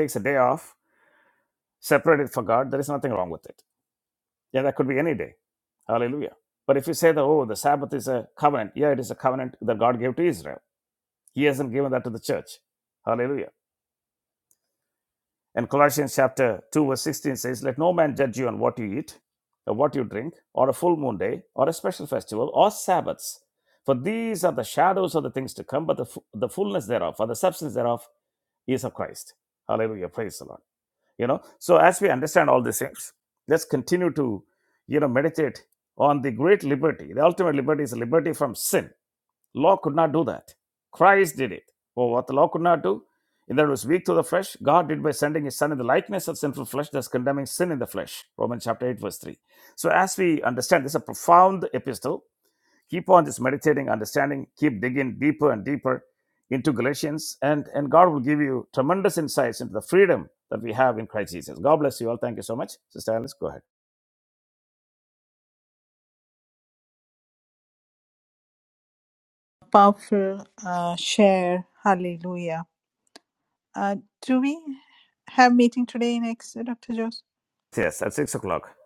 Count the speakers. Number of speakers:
2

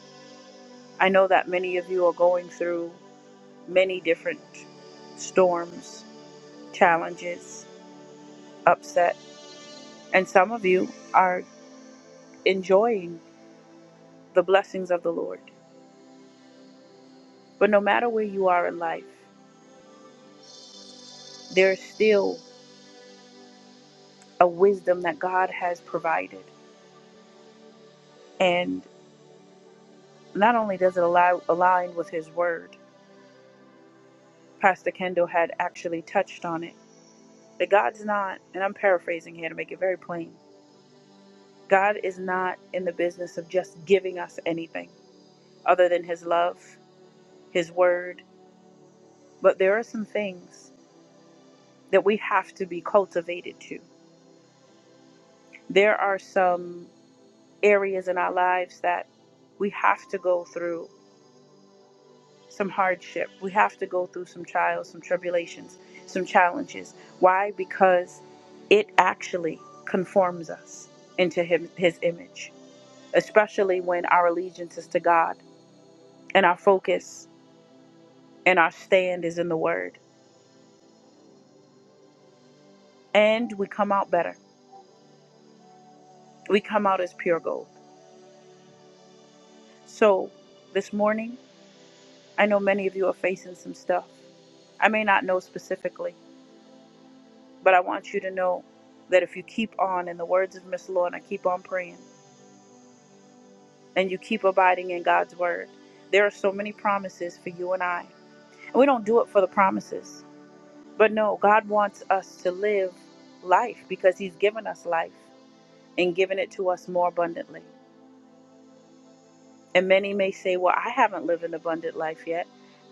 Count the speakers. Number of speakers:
1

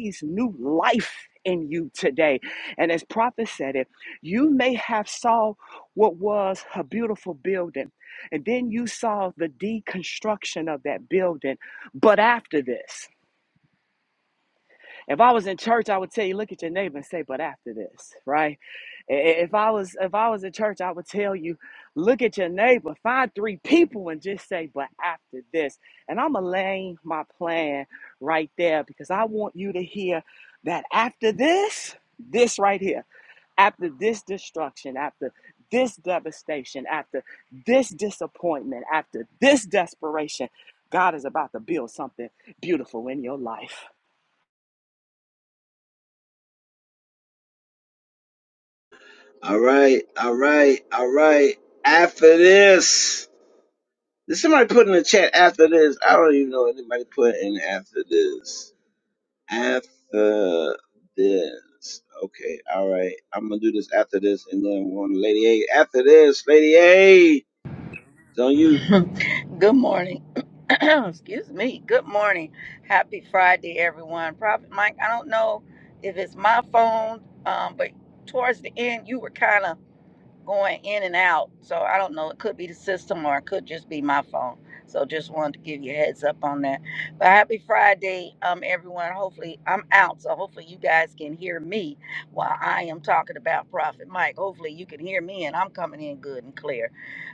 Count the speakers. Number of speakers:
3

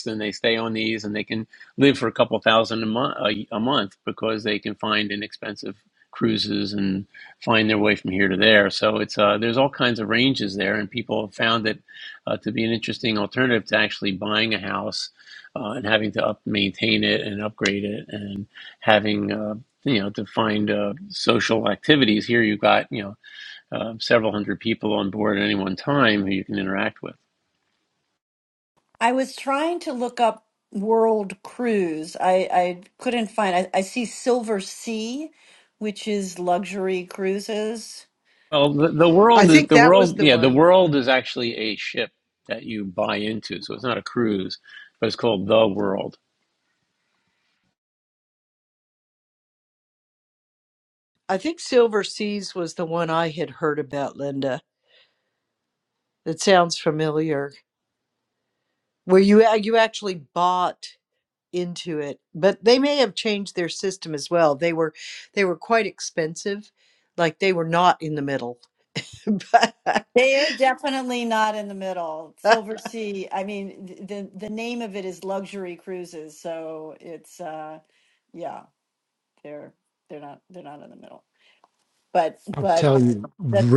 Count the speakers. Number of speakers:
4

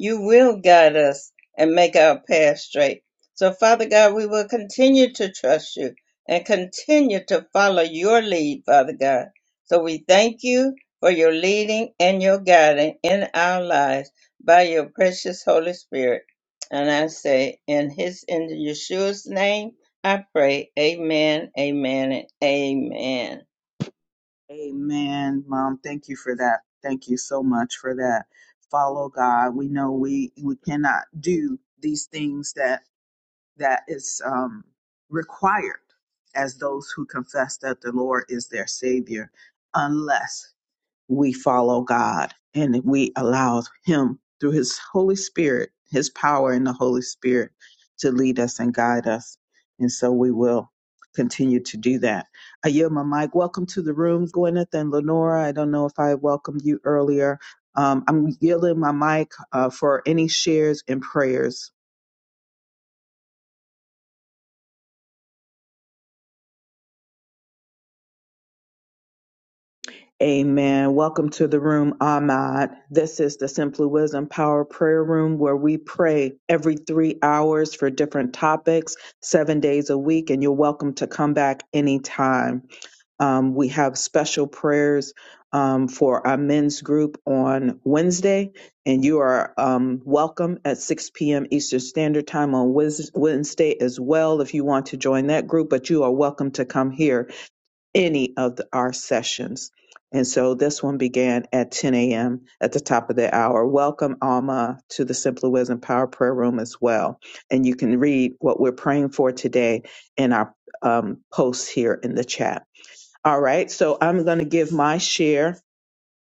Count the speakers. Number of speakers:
2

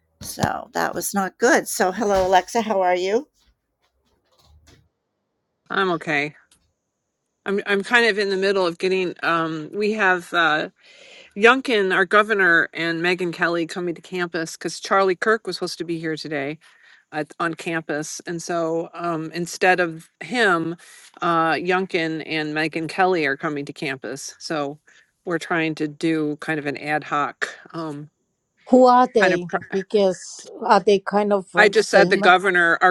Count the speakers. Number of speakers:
3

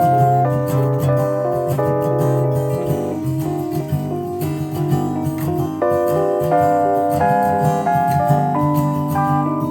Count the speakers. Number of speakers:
0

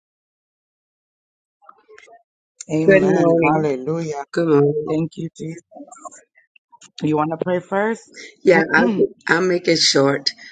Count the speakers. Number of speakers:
2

